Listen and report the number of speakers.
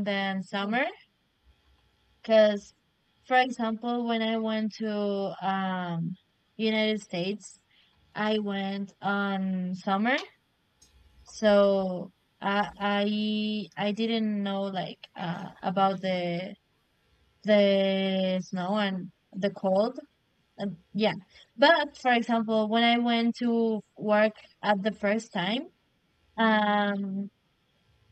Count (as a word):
one